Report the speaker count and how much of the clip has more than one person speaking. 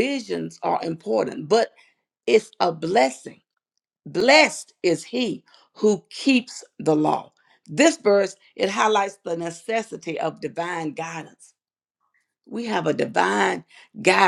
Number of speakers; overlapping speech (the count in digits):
1, no overlap